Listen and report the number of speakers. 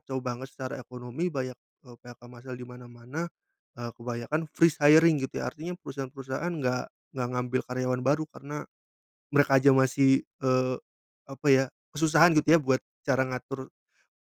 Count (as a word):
one